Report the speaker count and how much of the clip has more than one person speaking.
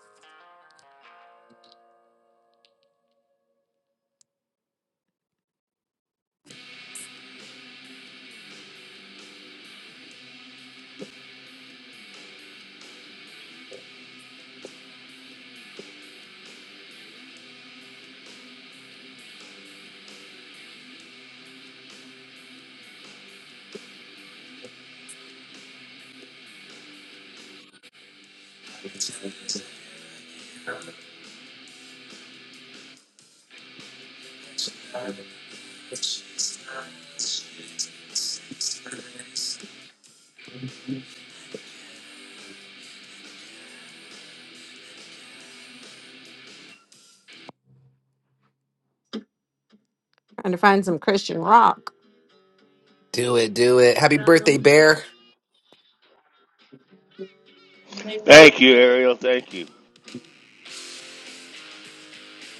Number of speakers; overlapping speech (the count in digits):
3, no overlap